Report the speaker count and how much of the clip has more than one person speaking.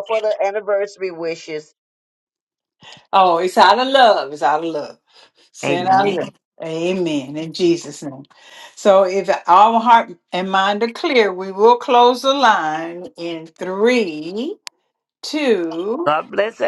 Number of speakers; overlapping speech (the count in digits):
3, about 3%